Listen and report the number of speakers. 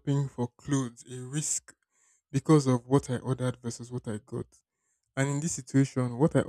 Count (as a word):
one